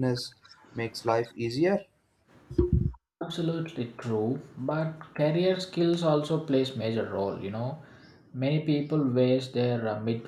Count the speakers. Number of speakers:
two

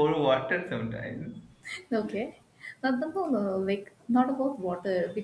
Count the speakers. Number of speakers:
two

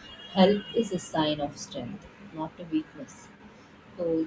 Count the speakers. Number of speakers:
one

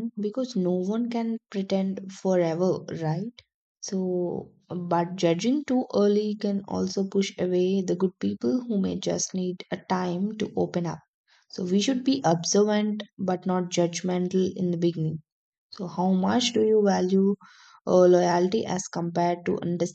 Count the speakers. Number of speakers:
one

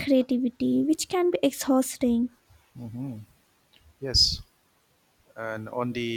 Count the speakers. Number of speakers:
two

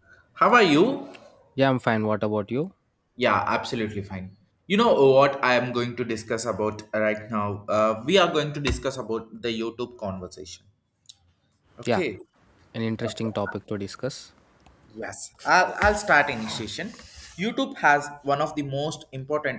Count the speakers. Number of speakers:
two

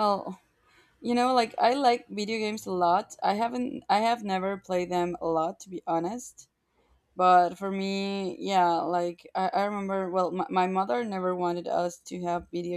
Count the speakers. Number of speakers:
one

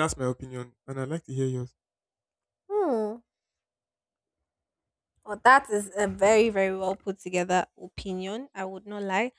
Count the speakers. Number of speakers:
two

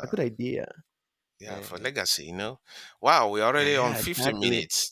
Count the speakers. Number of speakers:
two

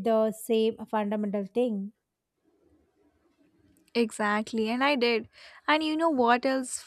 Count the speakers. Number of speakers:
two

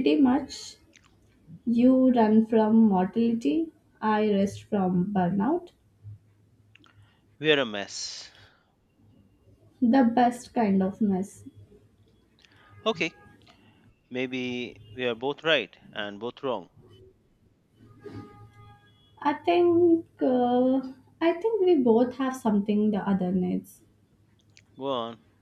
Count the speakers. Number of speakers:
two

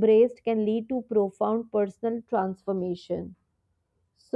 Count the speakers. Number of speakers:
one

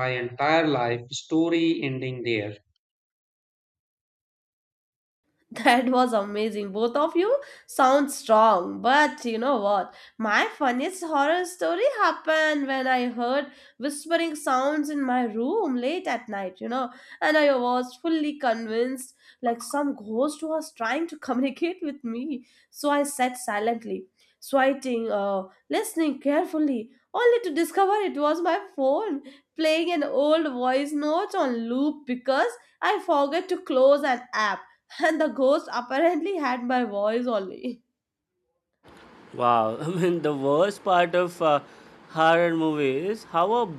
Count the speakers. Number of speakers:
three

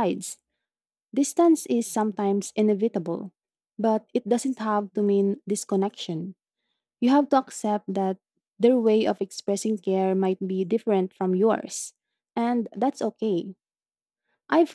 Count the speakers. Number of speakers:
one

